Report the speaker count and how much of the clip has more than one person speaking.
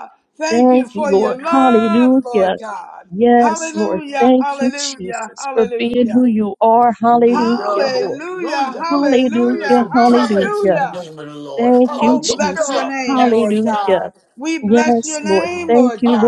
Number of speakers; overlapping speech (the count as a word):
three, about 77%